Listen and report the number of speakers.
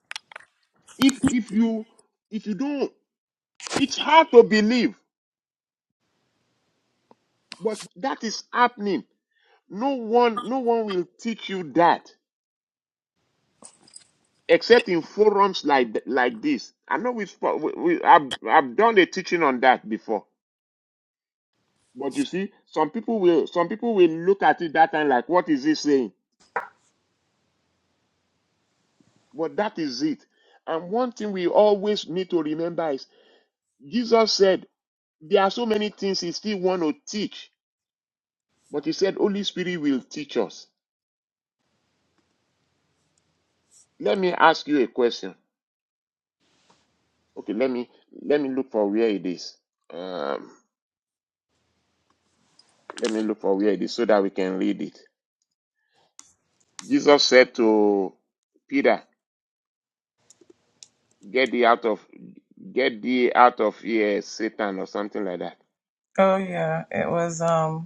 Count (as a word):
two